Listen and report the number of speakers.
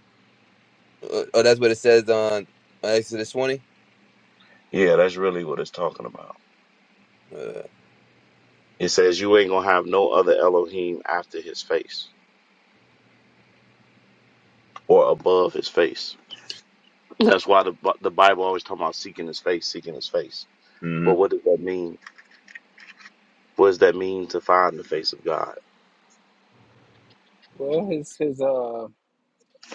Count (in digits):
3